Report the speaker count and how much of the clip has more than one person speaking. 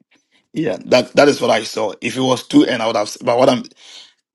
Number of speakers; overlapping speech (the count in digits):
1, no overlap